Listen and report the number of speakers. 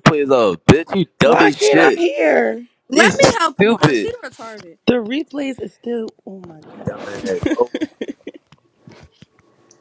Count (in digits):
4